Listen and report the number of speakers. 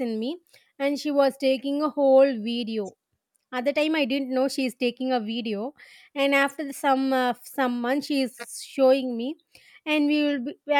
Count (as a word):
one